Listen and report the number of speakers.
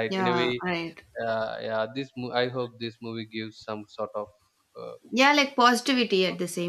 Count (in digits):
2